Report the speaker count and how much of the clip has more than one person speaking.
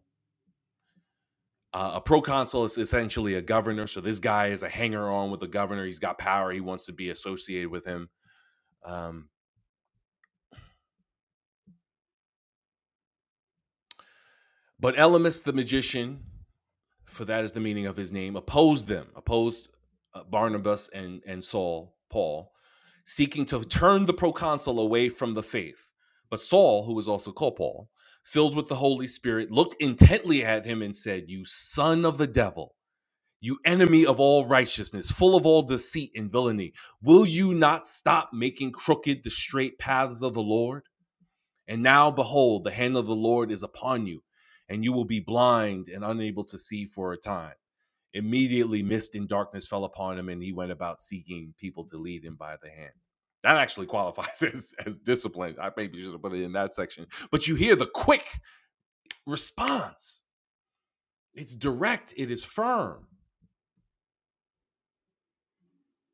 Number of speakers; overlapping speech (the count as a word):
one, no overlap